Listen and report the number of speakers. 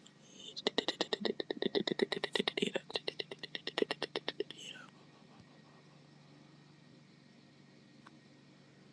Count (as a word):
zero